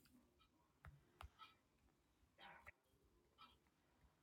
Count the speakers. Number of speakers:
0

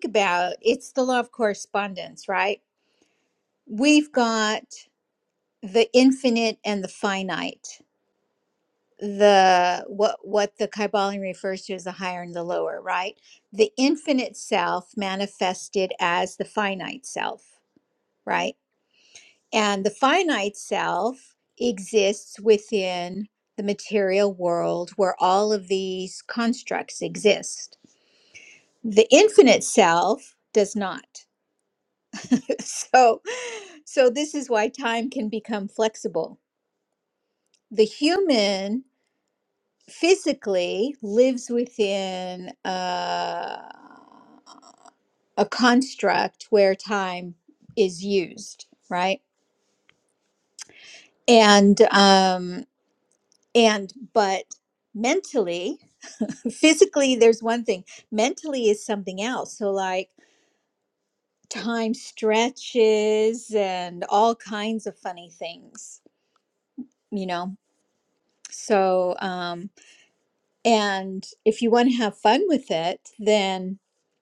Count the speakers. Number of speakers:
1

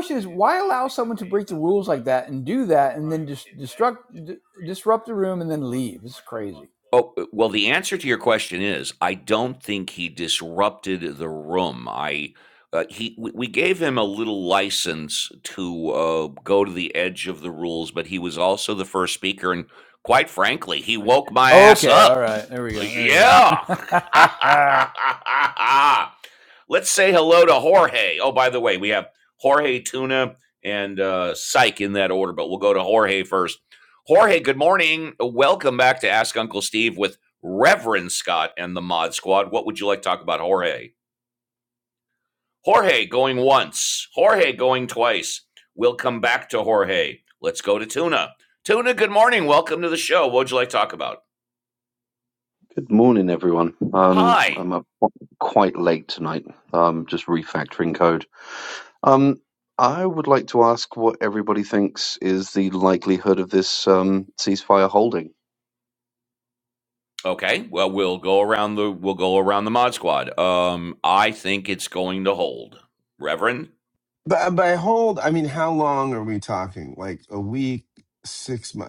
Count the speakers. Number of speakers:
4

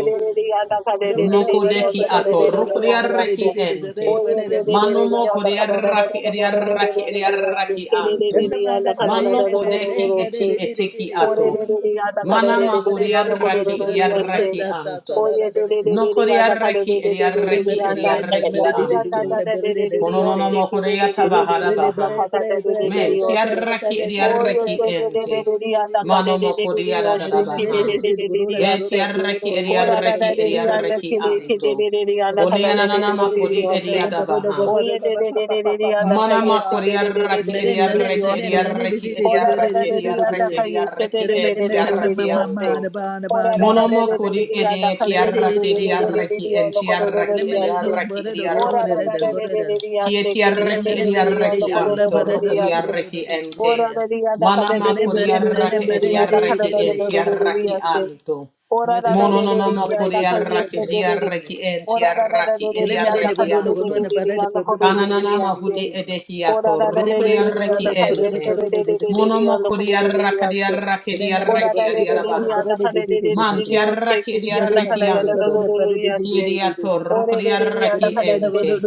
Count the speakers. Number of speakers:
3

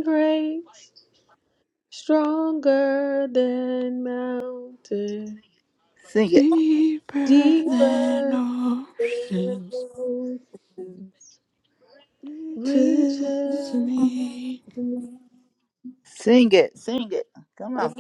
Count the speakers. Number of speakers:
3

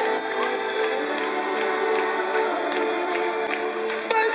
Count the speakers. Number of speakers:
0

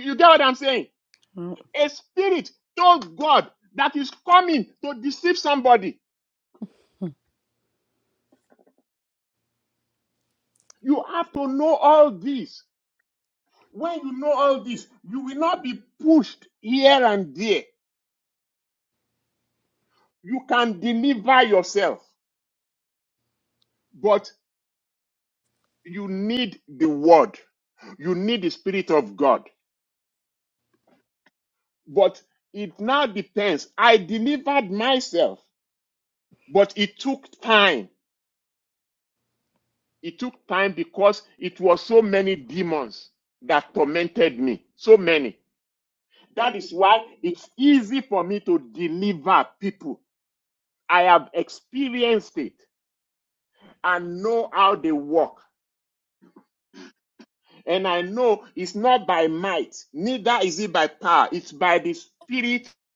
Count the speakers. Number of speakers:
1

